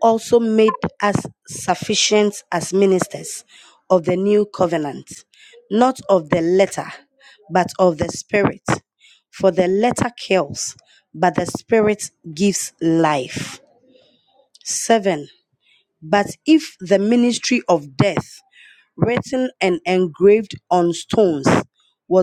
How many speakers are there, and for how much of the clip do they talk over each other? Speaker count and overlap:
1, no overlap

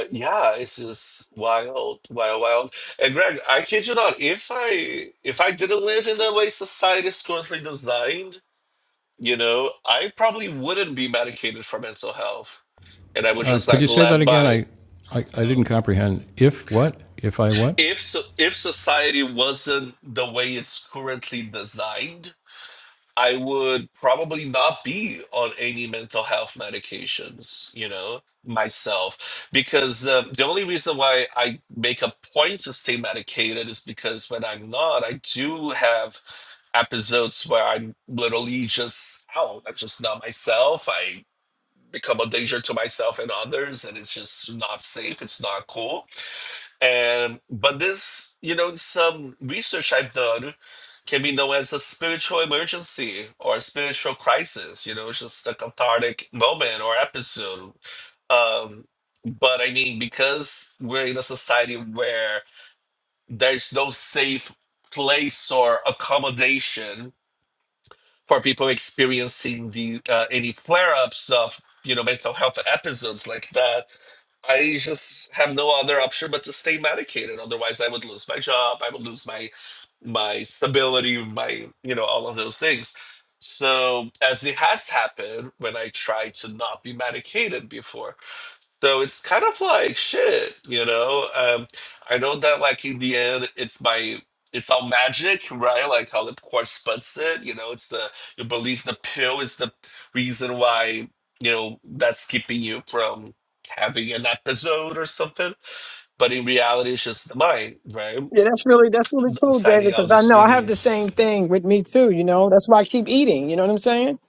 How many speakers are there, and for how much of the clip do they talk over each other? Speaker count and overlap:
3, about 3%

